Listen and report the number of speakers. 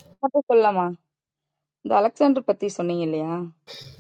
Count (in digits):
1